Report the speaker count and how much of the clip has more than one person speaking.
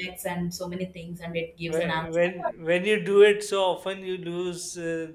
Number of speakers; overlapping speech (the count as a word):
two, about 16%